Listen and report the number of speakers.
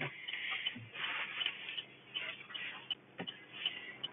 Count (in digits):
0